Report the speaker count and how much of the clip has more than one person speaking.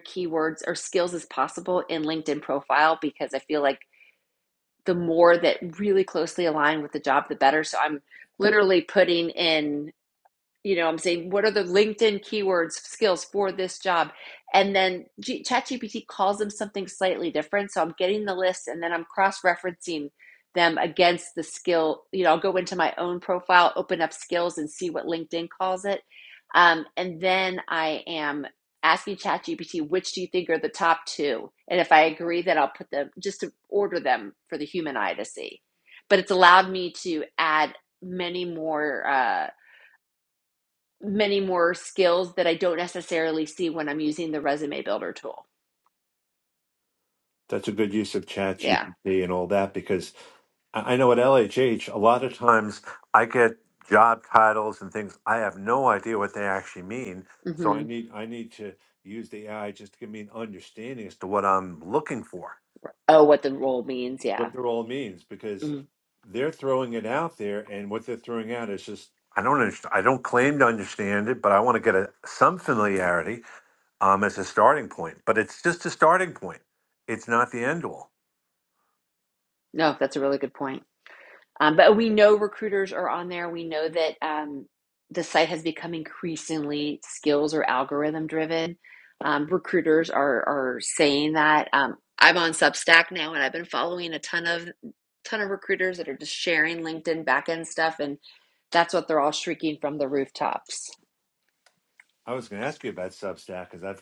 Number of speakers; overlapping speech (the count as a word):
two, about 1%